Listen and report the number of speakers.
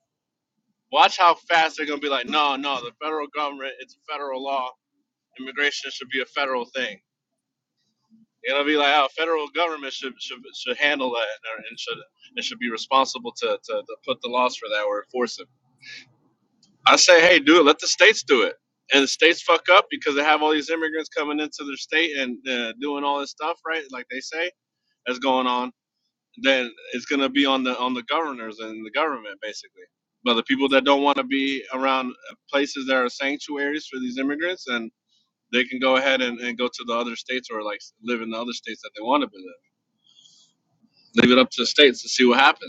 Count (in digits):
1